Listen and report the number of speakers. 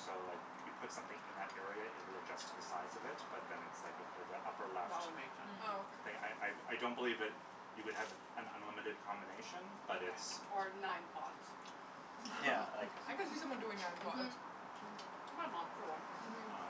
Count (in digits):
3